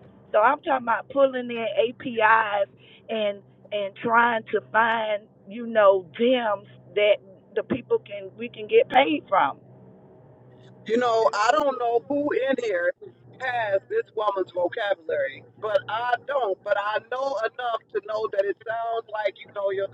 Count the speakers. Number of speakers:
two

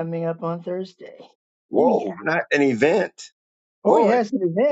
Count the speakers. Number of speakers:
two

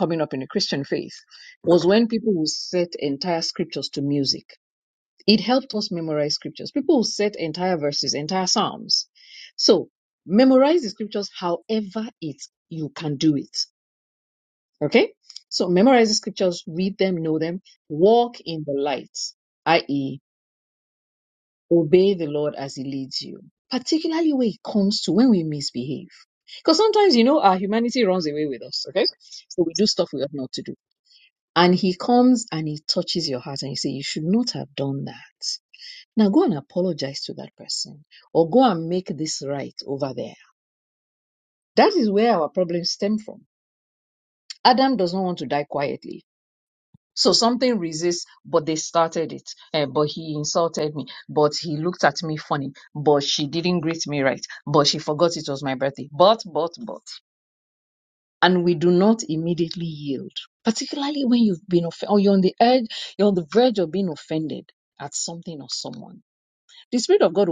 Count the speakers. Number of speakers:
one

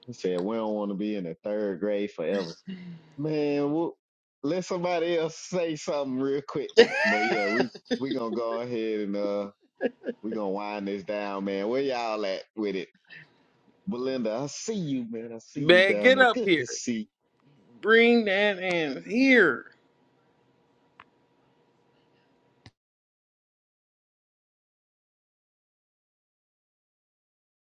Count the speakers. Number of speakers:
two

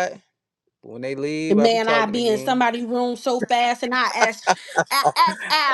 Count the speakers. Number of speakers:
two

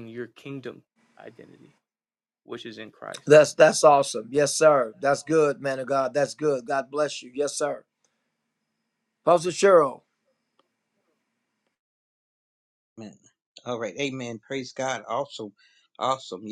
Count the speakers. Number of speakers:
three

